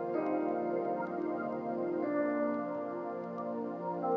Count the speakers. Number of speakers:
0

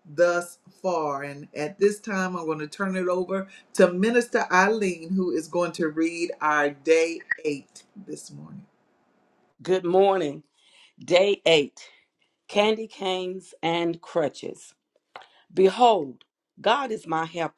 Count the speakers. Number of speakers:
2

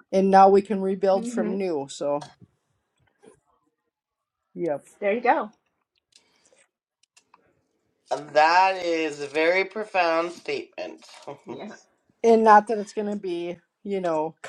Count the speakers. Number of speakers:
3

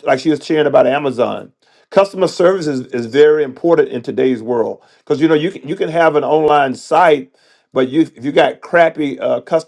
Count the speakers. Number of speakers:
1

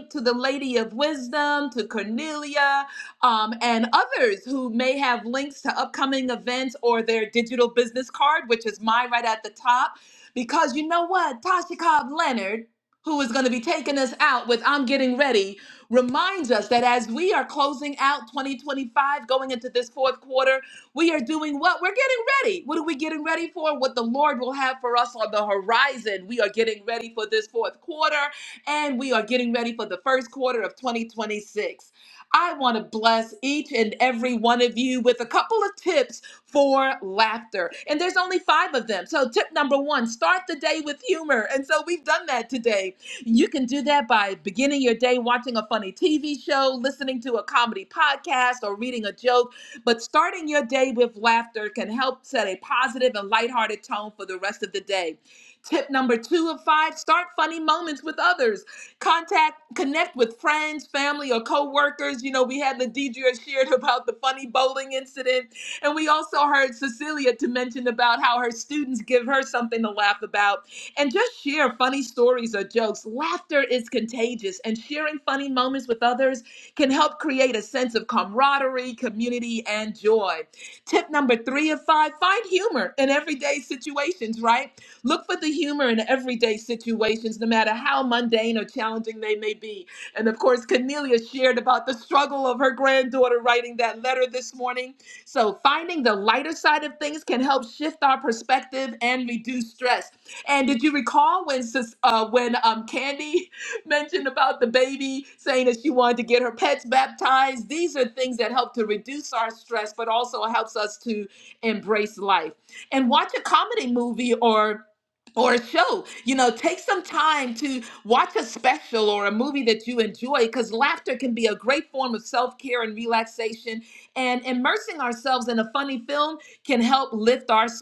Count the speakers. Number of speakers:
1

